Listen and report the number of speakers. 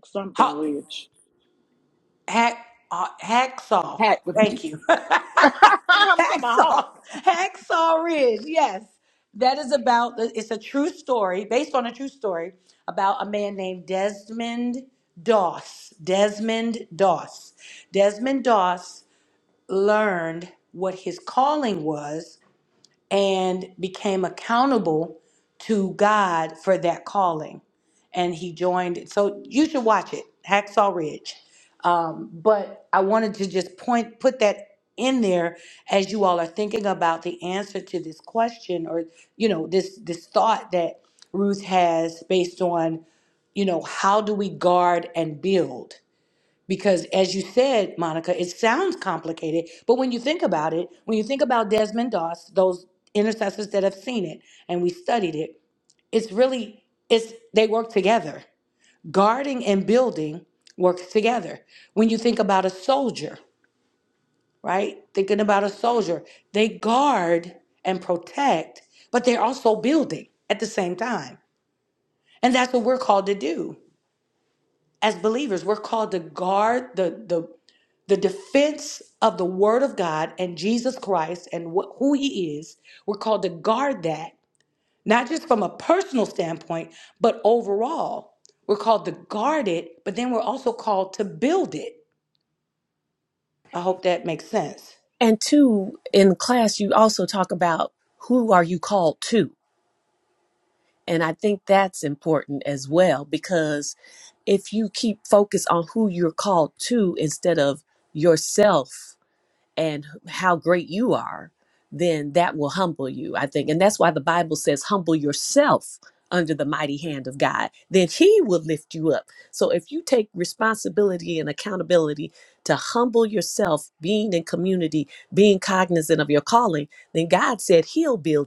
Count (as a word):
three